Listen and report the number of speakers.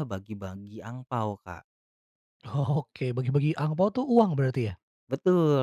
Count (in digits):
2